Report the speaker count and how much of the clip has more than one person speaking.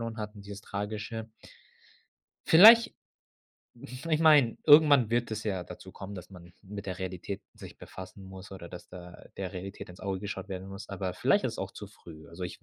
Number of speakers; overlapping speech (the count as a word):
one, no overlap